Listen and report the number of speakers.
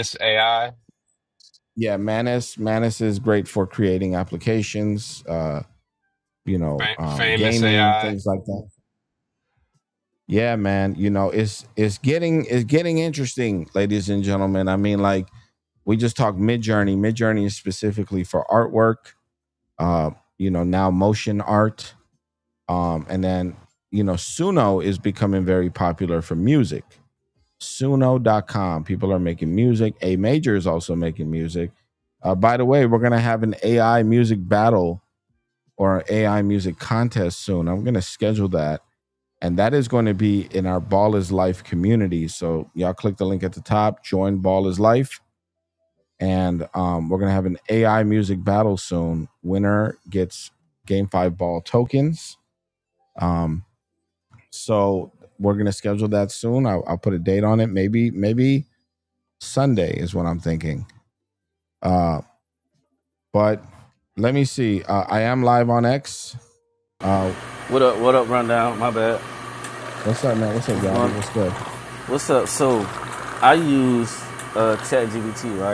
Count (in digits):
3